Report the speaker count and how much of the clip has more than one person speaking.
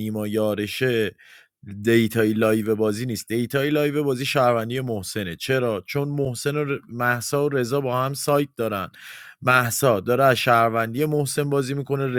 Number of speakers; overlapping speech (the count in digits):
1, no overlap